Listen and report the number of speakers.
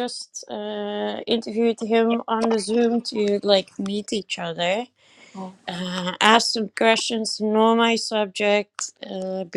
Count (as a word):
one